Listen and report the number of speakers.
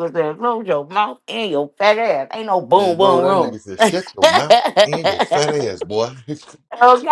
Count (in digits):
2